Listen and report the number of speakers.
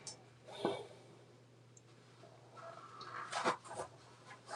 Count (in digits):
0